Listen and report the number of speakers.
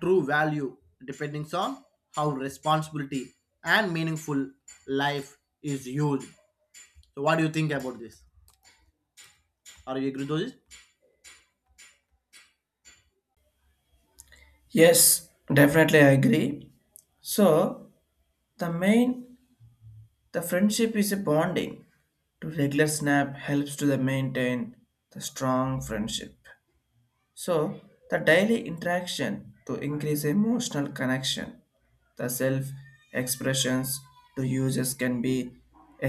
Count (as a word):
two